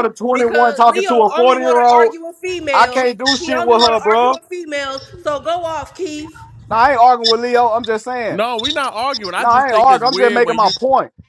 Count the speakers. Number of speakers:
3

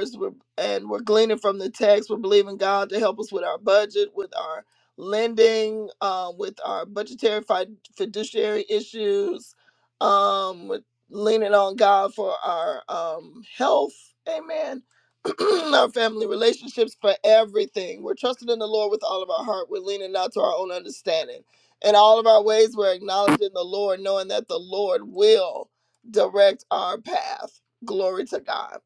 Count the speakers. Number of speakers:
1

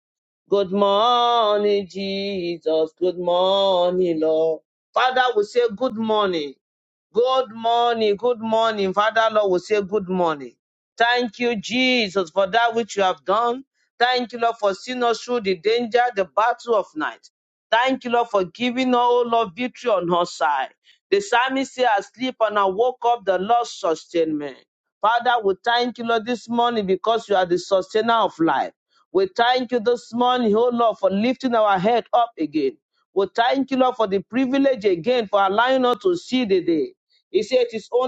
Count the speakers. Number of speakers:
1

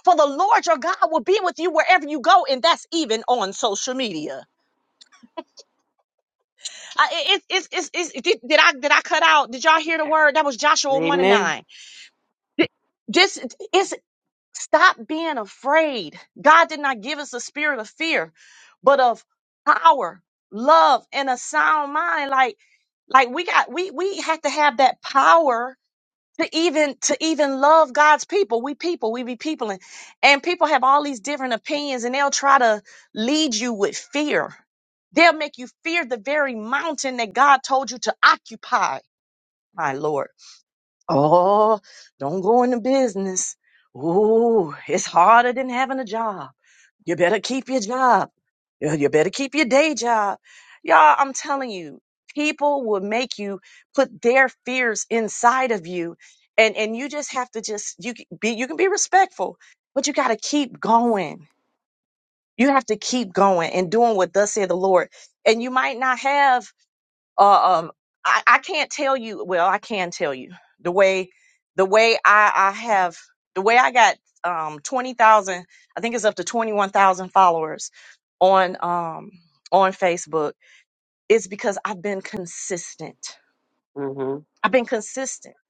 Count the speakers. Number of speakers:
2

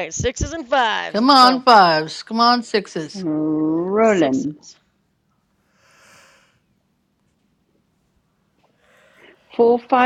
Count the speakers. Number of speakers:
3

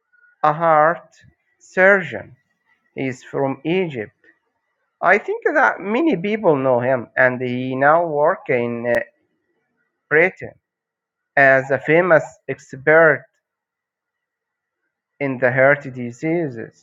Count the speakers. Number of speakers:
1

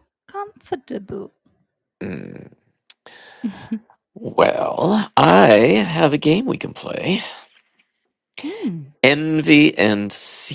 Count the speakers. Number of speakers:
2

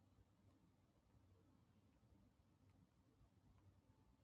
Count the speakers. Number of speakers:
0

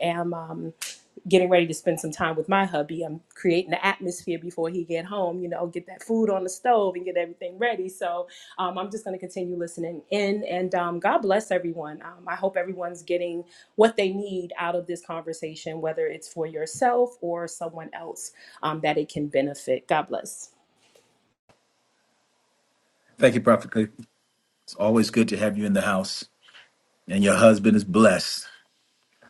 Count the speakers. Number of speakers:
2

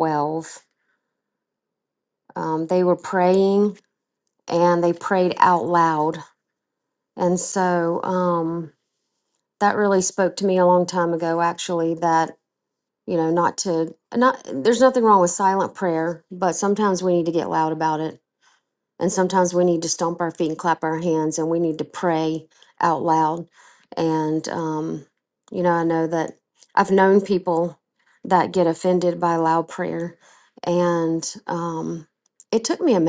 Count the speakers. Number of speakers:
1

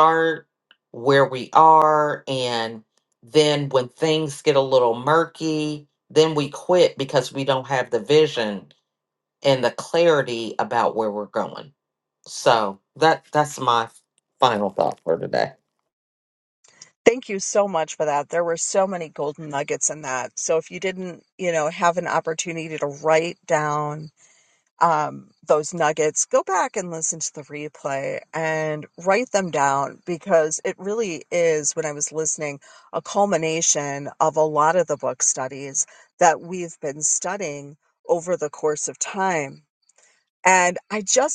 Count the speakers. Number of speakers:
2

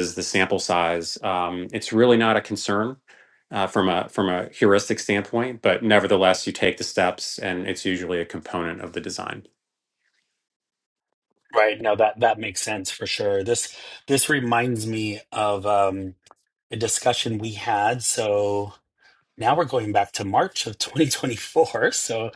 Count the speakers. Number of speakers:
2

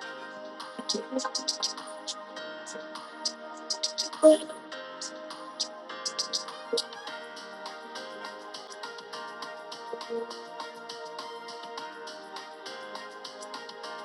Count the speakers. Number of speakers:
0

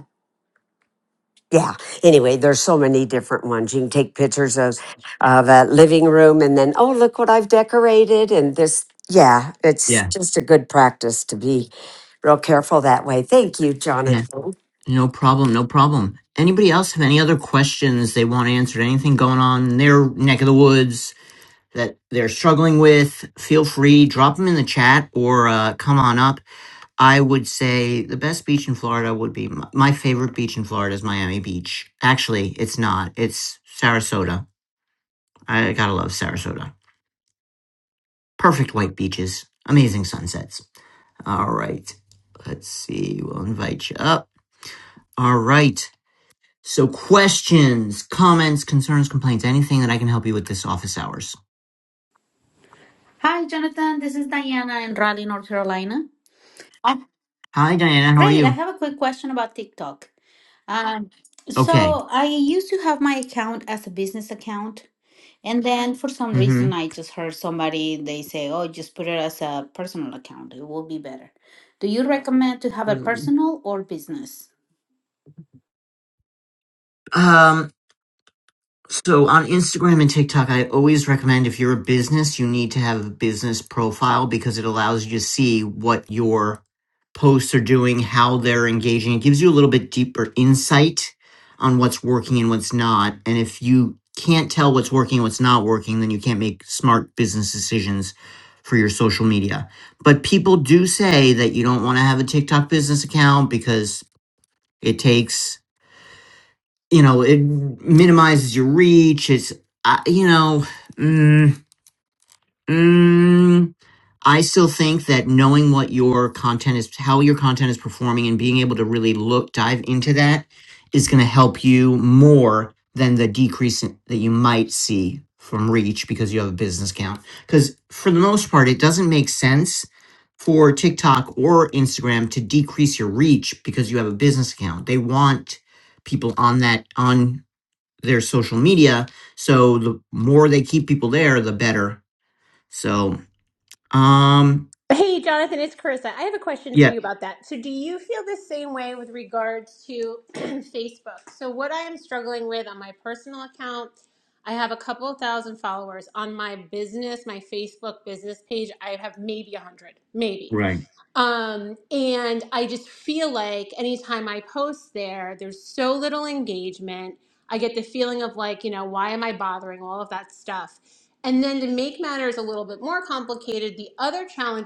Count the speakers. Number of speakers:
4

